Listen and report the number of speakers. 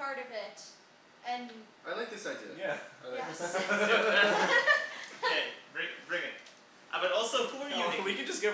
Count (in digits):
4